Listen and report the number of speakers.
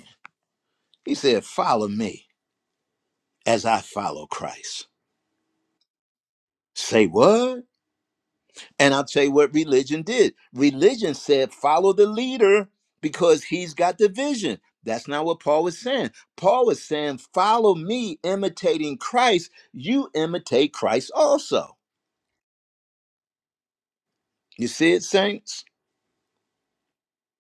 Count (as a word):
one